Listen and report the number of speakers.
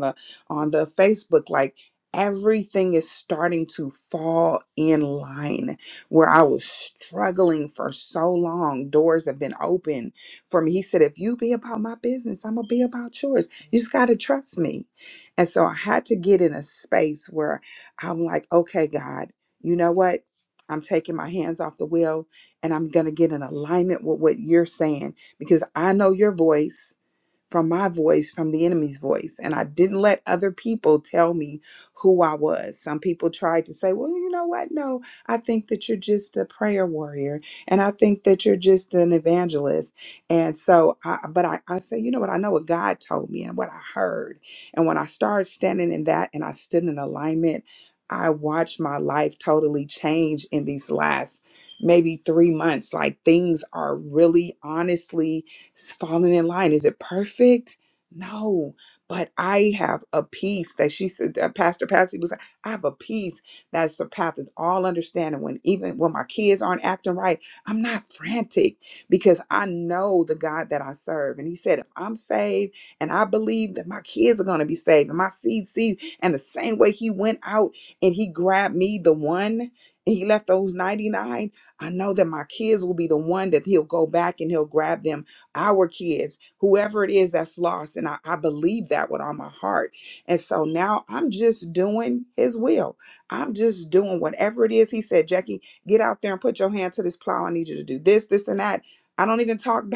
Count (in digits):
1